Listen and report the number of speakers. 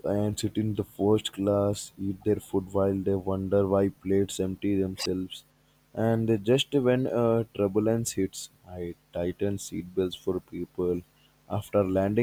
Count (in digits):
1